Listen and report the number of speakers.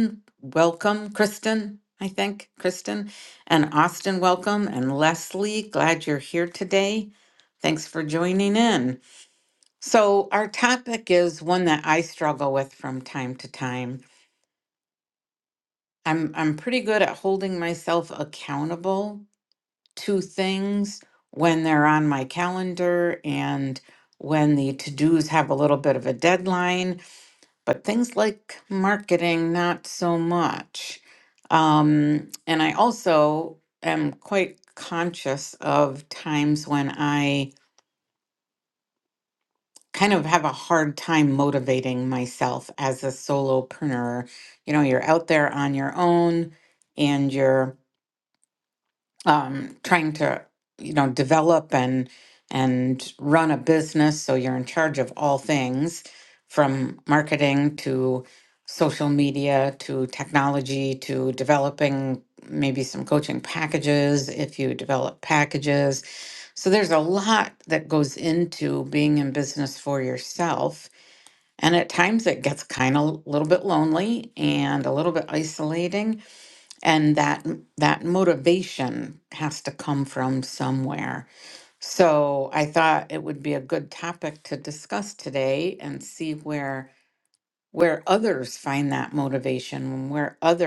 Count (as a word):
one